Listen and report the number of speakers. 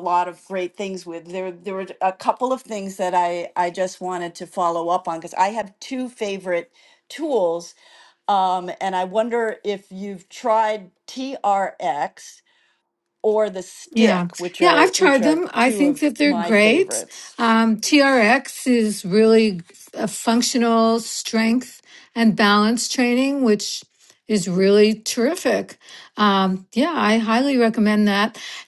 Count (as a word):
two